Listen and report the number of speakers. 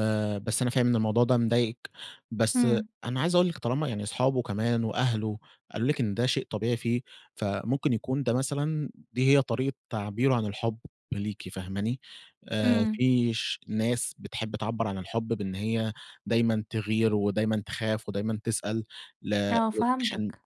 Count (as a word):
two